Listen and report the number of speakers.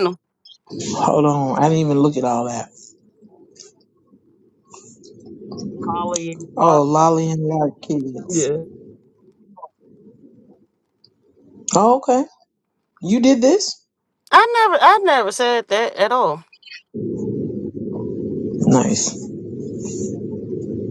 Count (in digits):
3